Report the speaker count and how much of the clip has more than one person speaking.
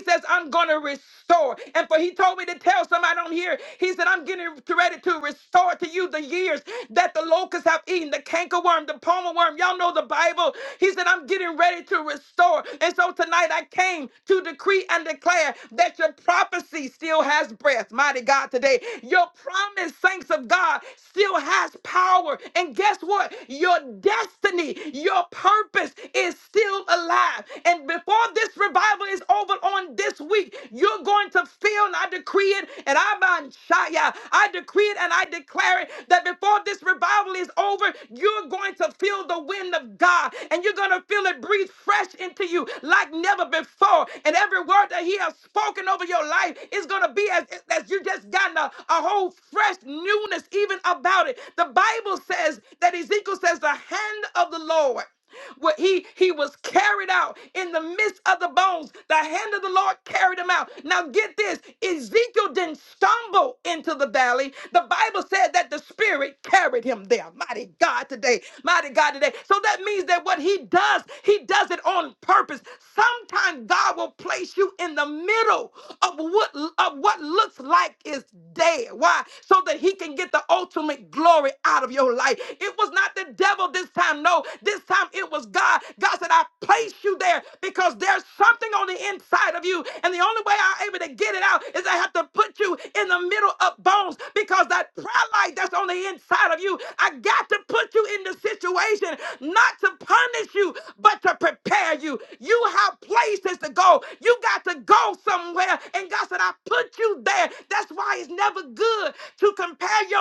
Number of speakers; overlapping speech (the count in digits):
1, no overlap